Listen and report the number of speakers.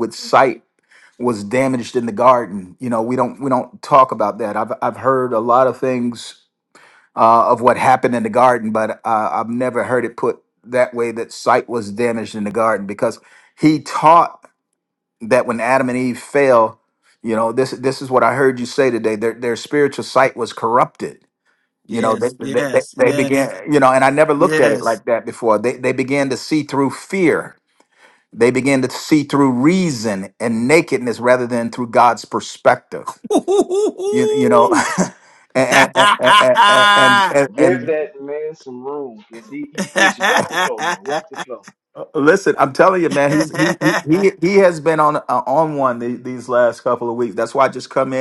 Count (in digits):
3